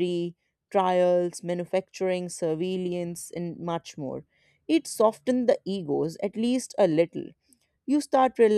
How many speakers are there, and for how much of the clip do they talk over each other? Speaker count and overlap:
one, no overlap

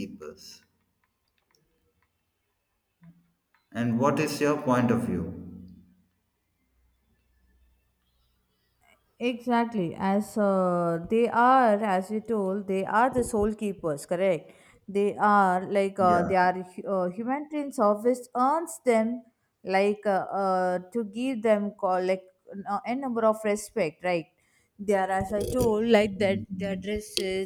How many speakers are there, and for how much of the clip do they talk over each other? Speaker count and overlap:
two, about 4%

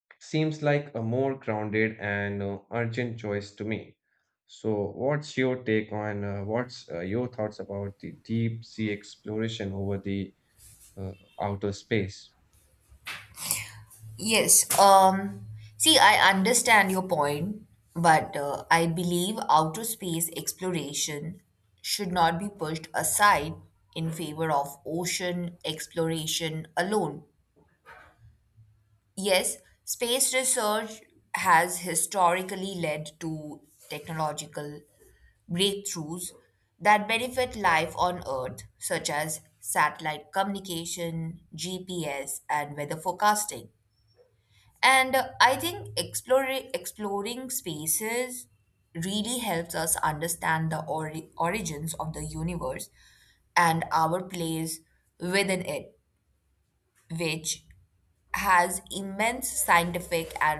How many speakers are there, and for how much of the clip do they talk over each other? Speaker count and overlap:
two, no overlap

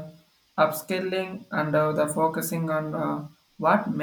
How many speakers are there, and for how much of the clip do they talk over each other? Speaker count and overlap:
one, no overlap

